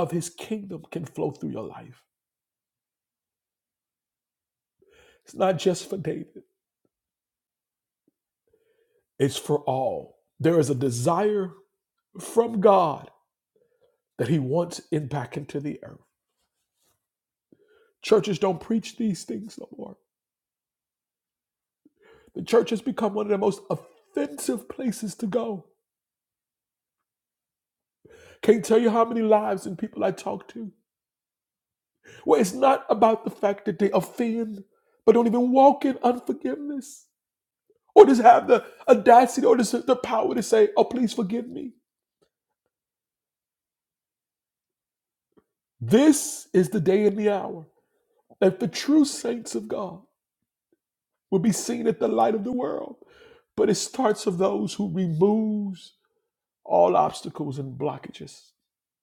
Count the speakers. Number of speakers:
1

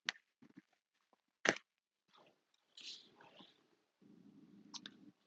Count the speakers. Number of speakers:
0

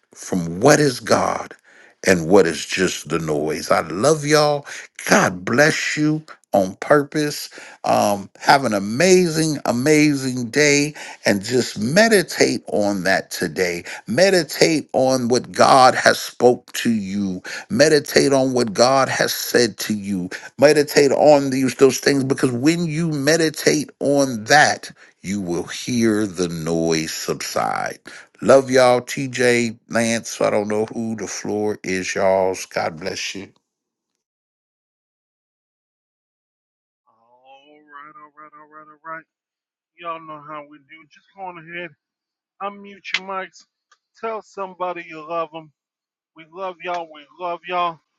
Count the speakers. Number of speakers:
2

